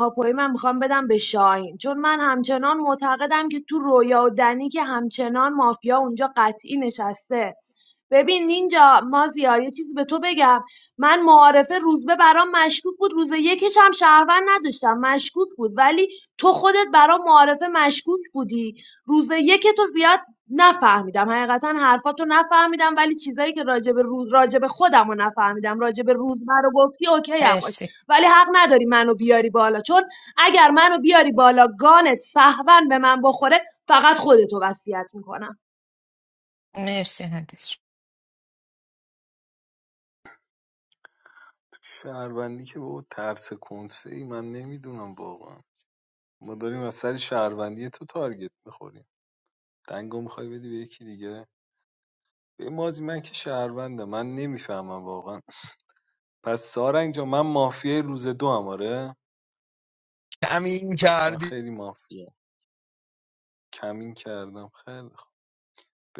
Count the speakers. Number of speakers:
four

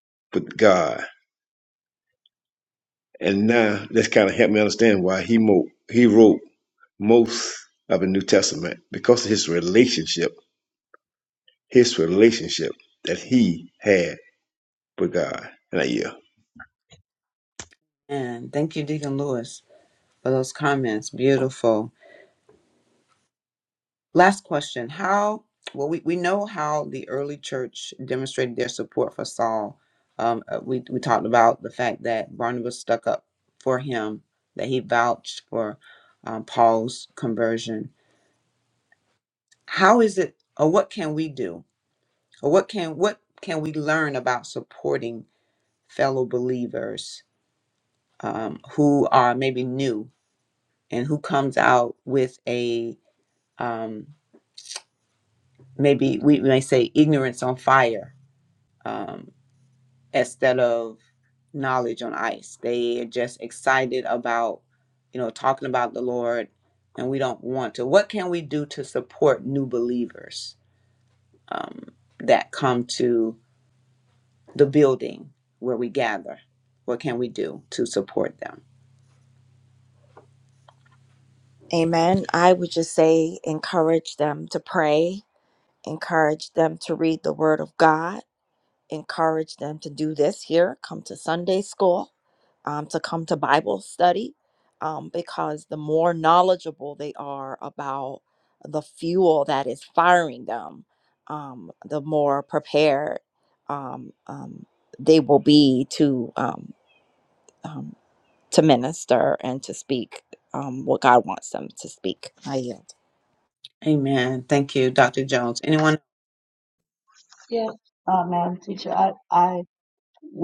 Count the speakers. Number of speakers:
four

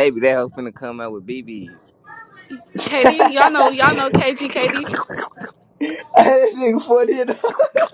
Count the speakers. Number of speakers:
three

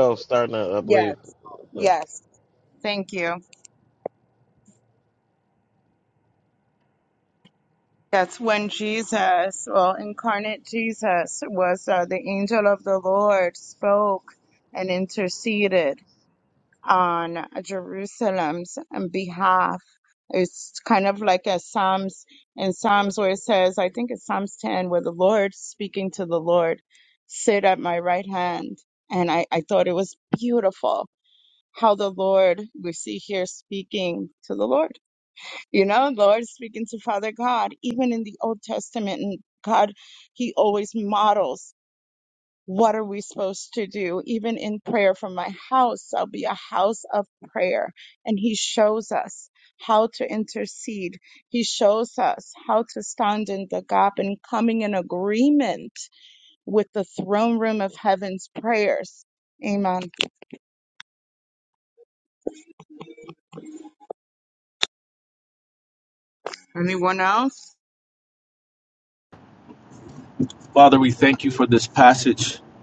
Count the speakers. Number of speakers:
three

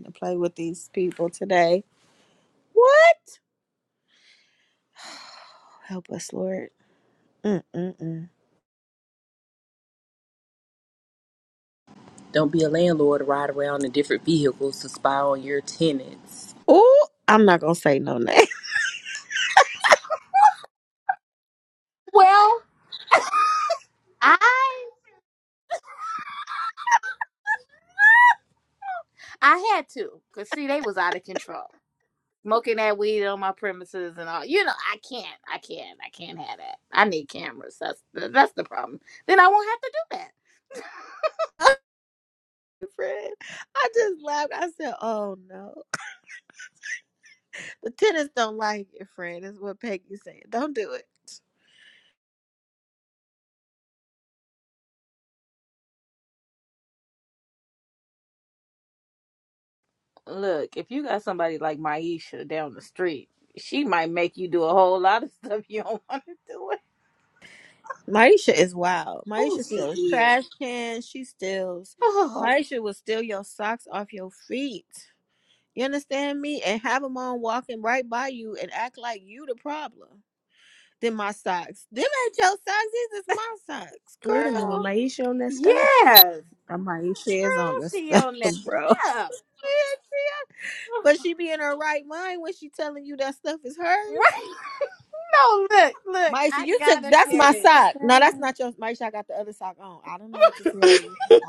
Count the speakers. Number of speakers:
four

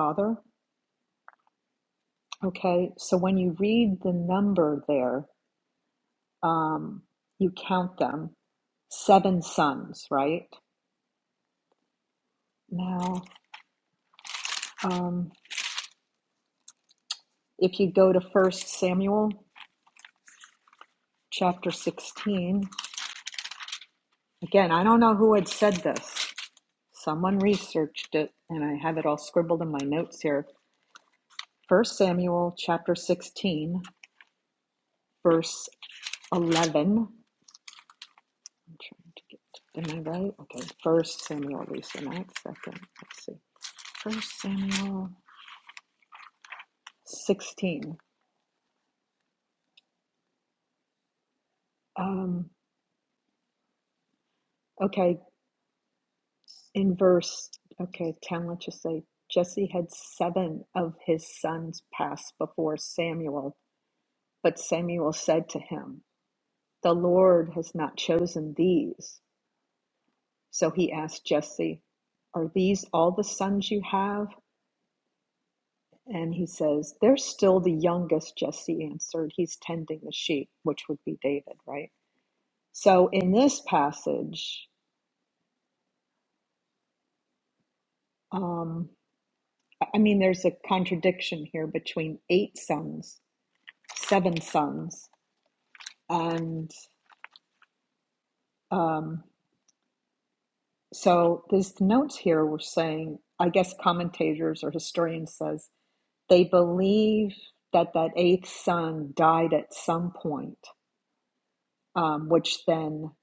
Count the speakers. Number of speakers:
one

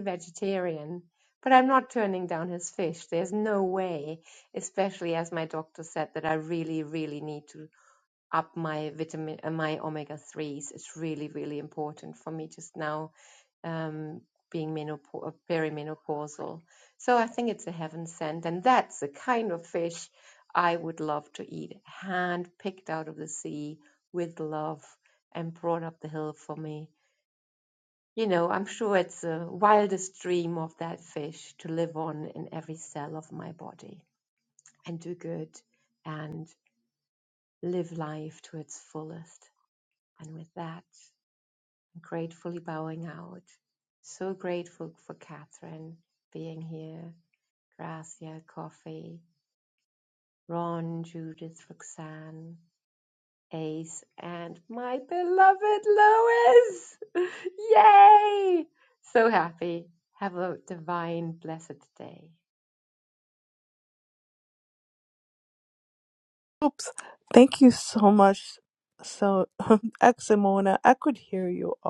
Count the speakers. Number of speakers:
two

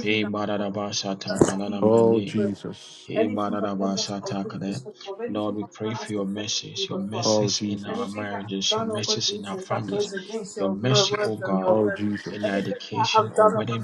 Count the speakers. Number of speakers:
three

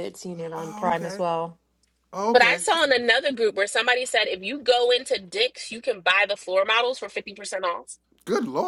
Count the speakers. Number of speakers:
three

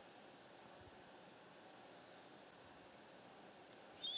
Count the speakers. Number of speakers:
zero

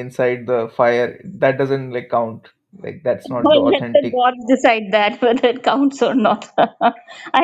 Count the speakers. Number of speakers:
two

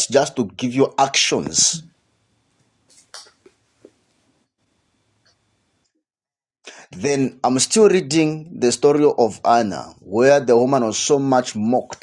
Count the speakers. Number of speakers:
one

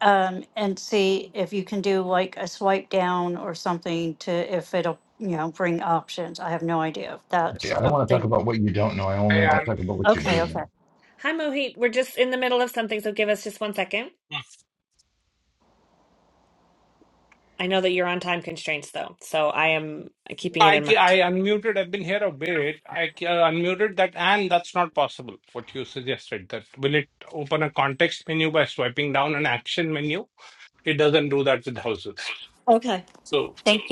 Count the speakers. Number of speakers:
four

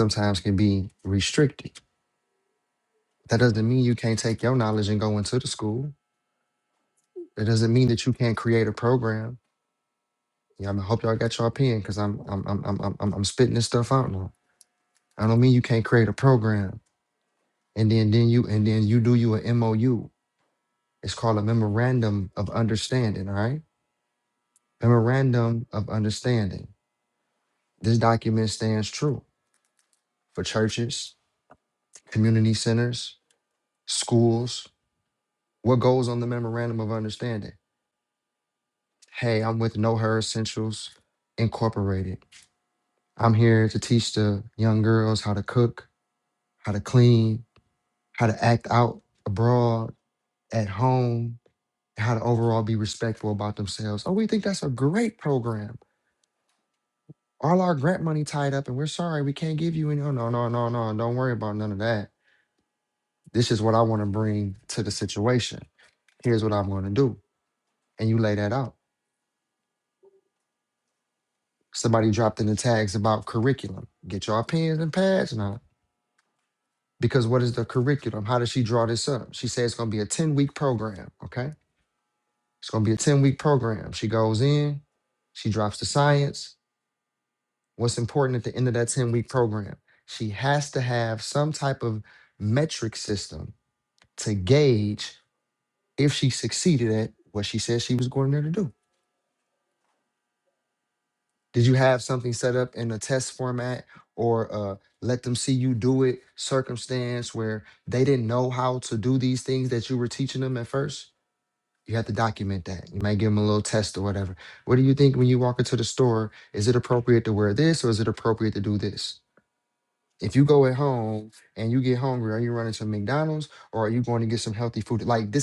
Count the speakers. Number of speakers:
one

